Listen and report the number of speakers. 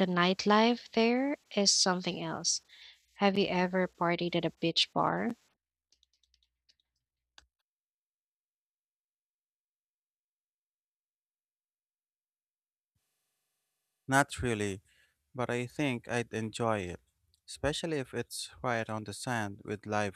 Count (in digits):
2